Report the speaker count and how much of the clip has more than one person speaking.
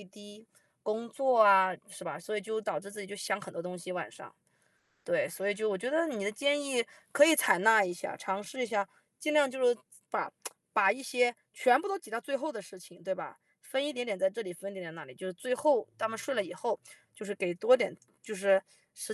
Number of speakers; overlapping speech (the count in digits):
1, no overlap